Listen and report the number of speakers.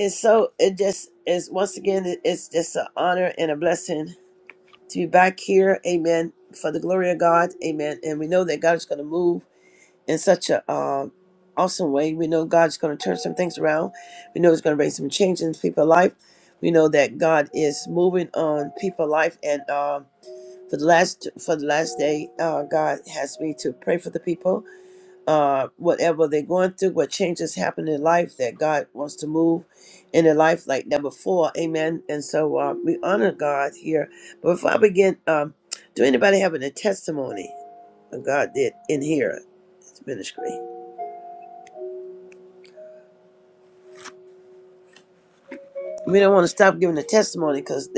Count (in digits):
1